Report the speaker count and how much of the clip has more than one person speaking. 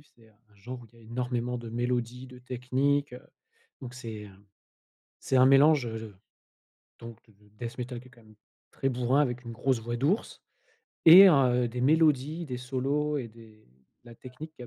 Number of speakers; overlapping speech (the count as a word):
one, no overlap